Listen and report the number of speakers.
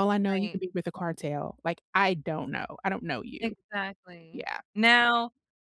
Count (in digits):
2